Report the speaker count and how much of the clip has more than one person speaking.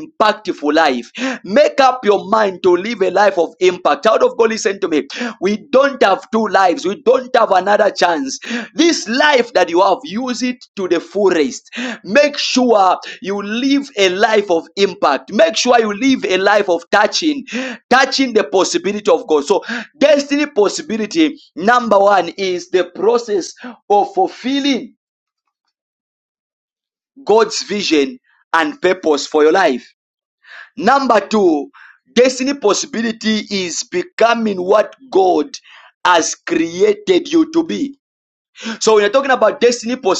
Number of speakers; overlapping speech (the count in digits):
1, no overlap